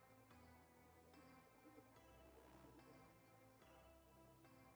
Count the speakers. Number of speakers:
0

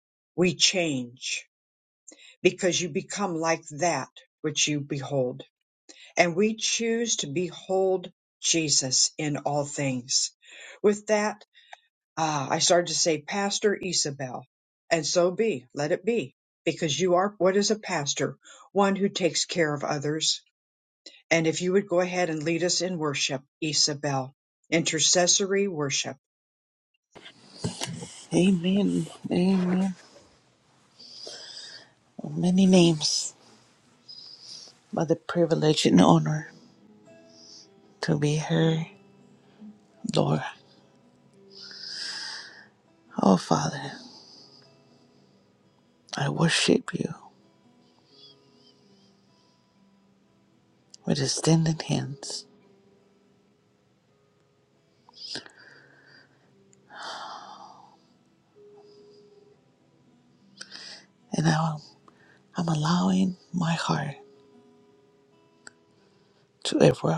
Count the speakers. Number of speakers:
2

